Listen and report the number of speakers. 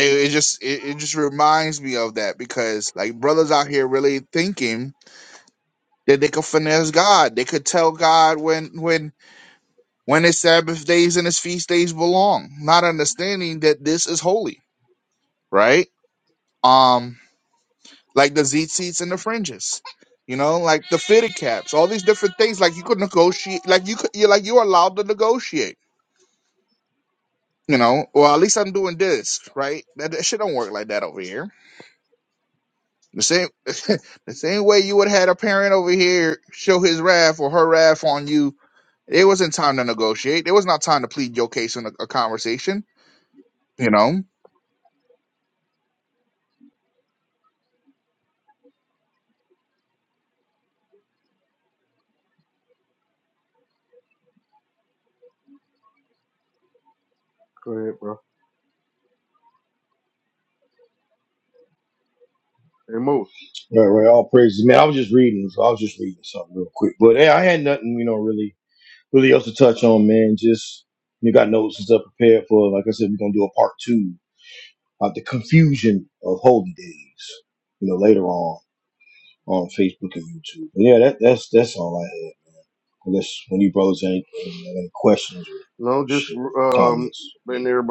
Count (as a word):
three